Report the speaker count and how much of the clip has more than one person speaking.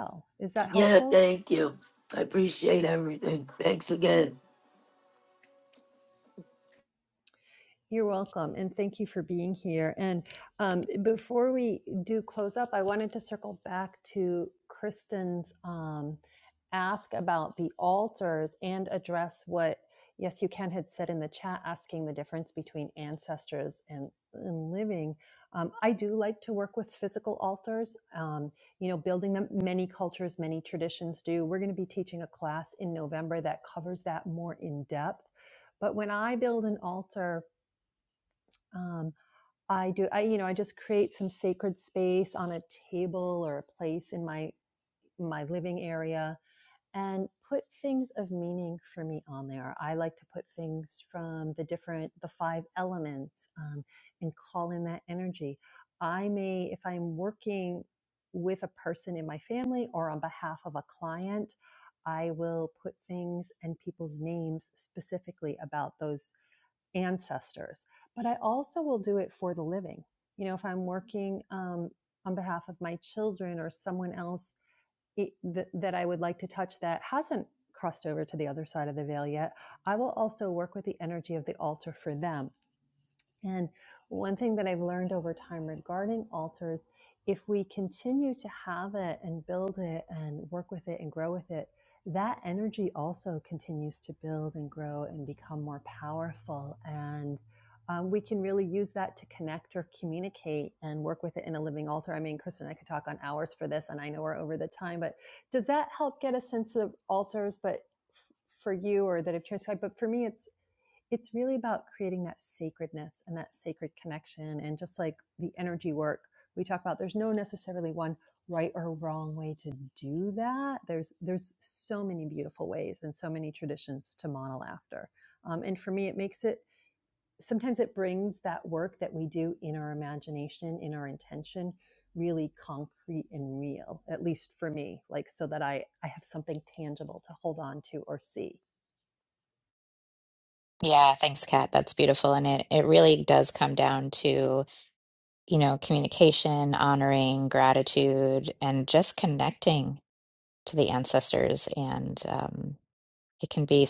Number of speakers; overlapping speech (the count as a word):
three, under 1%